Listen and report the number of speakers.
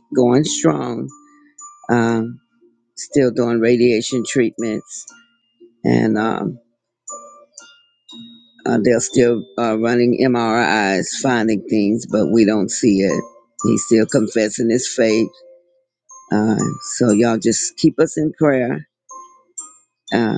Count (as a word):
one